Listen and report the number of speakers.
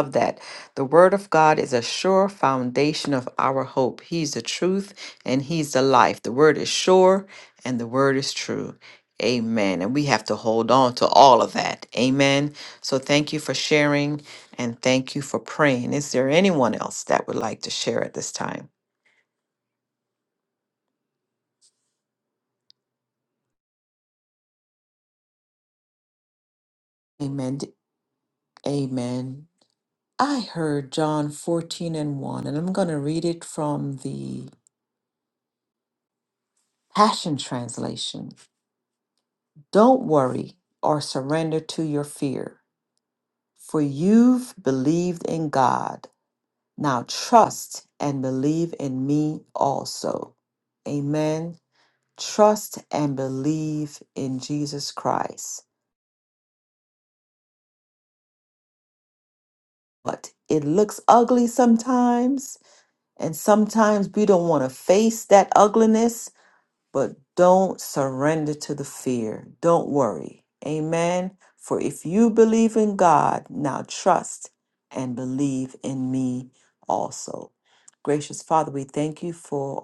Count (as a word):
one